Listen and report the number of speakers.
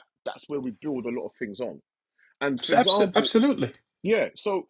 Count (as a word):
two